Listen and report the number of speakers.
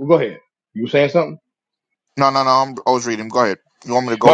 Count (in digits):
2